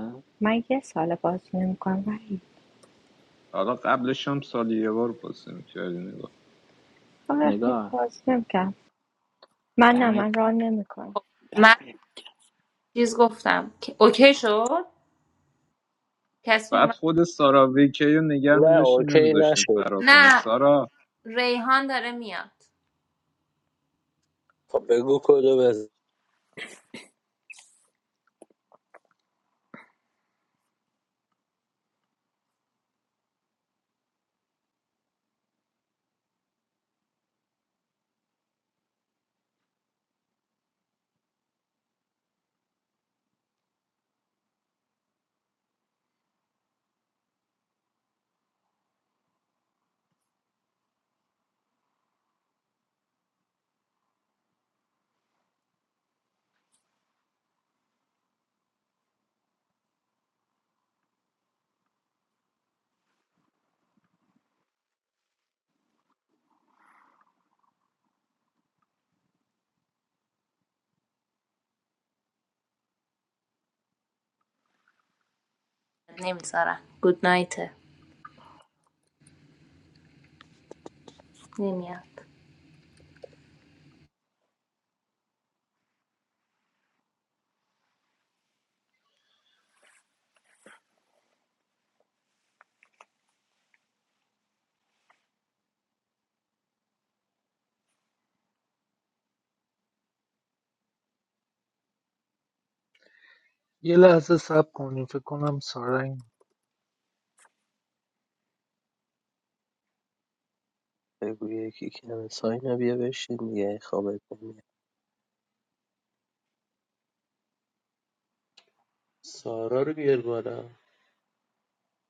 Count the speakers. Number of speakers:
7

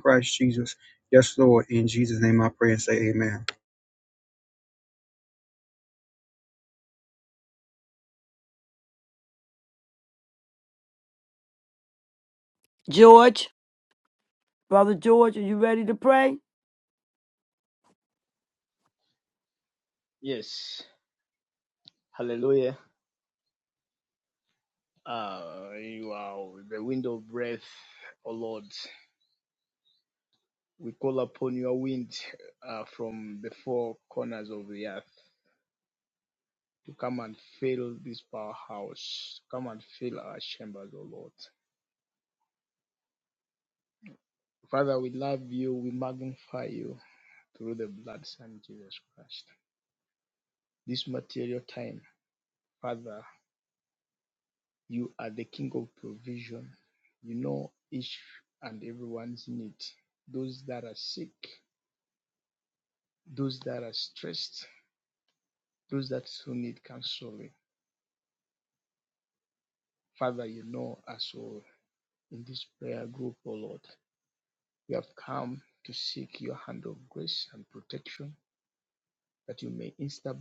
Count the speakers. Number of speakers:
3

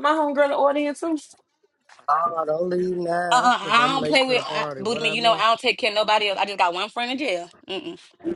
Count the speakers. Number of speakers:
3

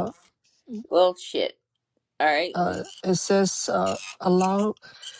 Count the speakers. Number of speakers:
2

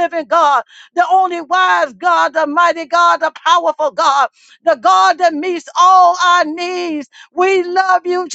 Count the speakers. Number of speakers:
1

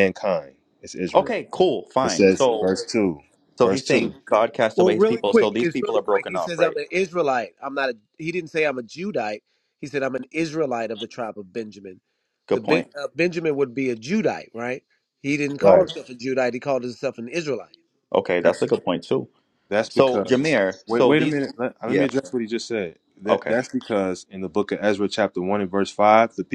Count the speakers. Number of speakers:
3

